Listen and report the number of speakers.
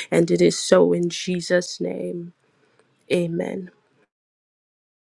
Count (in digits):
1